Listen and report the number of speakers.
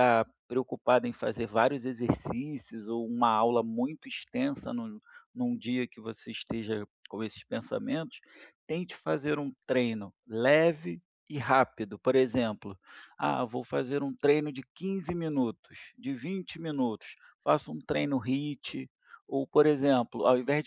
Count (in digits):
1